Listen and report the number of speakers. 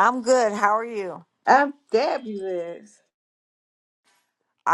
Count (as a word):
two